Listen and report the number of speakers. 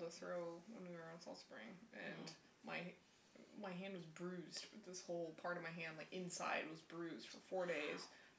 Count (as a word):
one